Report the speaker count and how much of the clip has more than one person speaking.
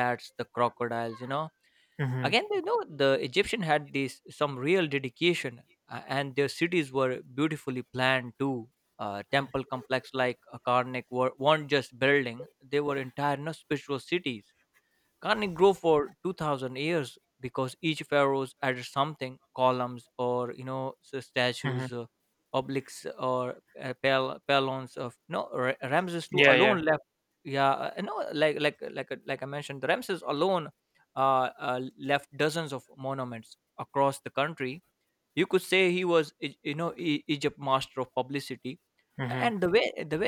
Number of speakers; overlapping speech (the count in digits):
2, about 3%